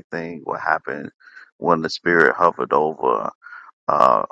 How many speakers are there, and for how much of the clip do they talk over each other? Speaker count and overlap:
1, no overlap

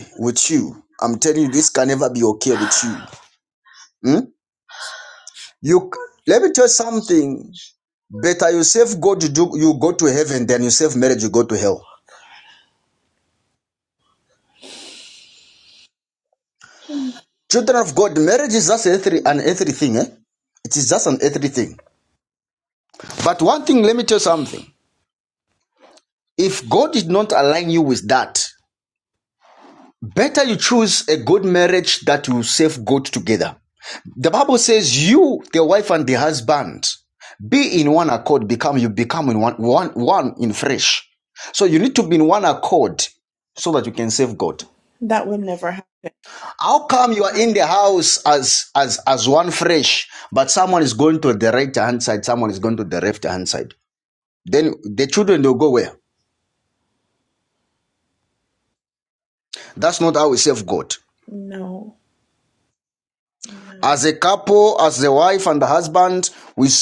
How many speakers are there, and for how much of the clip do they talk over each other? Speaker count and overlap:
2, no overlap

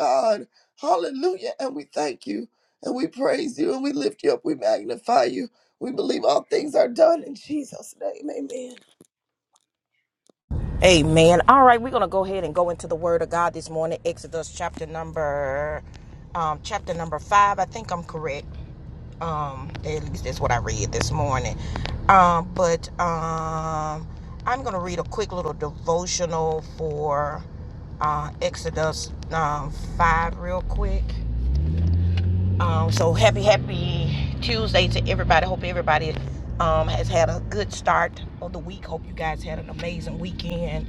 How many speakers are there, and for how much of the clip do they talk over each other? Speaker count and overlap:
2, no overlap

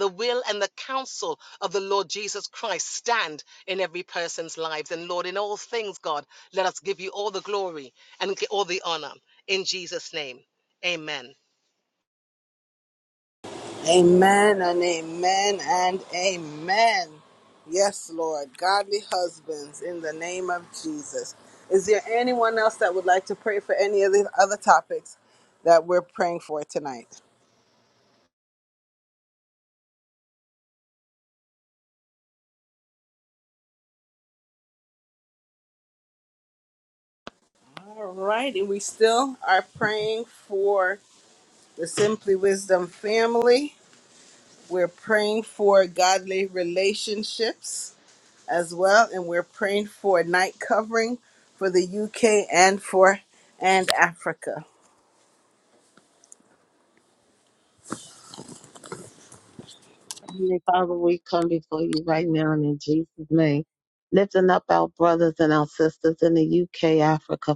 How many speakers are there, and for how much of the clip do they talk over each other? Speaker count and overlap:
3, no overlap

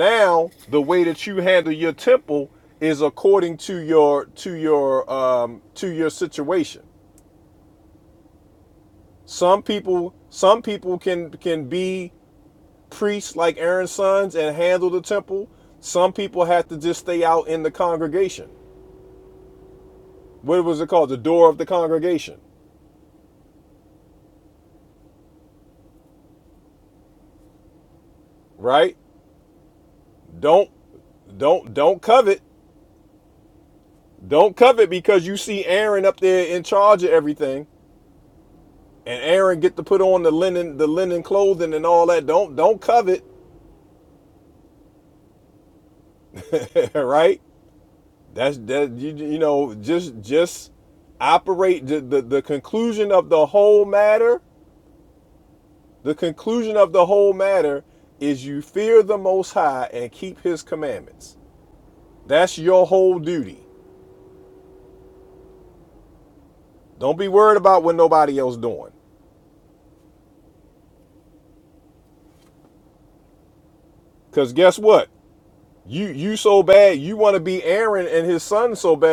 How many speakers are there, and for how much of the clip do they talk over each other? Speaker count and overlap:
1, no overlap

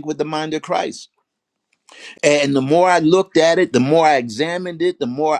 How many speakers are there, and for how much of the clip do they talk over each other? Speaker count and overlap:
1, no overlap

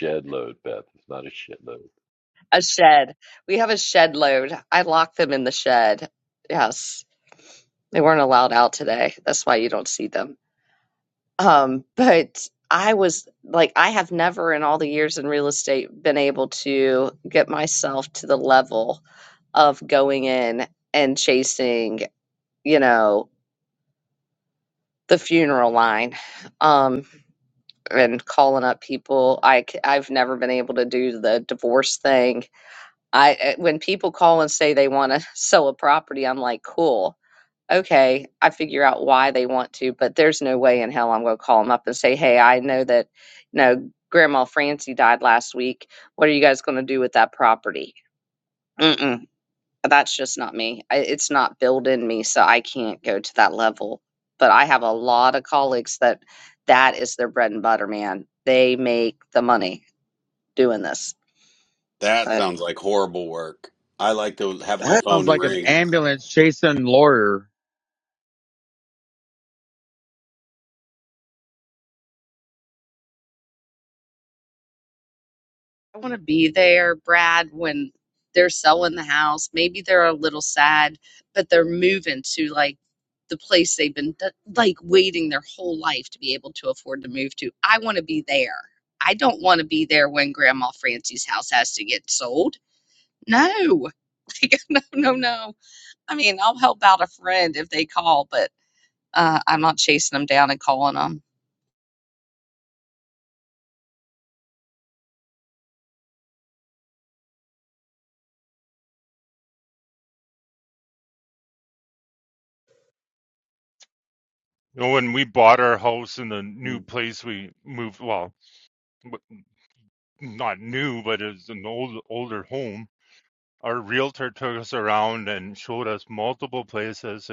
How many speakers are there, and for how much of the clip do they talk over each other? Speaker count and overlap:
5, about 1%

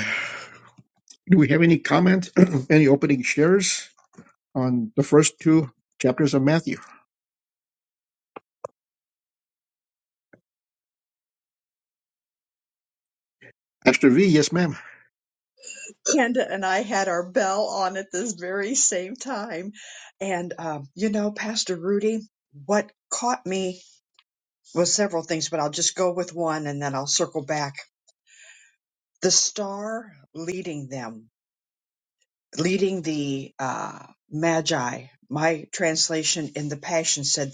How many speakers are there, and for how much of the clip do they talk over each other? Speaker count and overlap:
2, no overlap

